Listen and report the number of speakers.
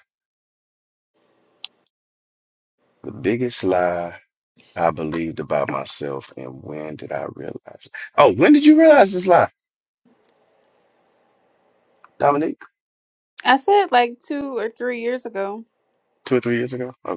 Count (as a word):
two